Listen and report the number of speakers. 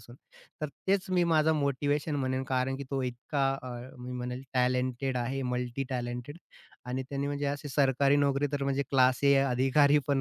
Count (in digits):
1